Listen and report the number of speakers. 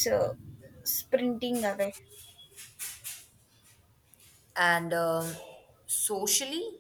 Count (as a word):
two